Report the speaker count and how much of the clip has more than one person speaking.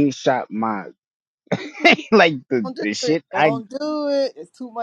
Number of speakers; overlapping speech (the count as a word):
two, about 20%